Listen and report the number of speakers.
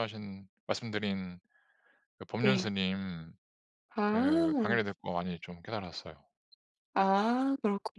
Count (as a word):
two